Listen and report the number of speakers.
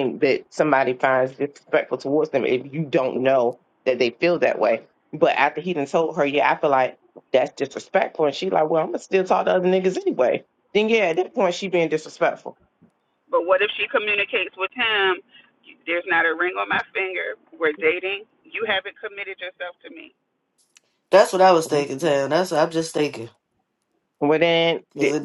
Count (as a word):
three